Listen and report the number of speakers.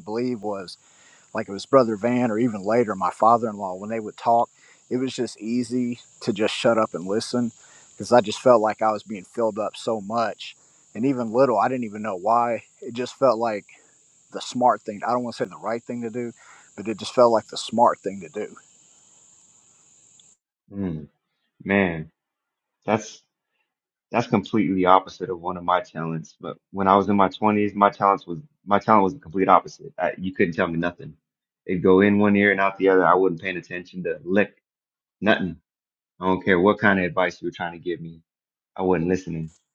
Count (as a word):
two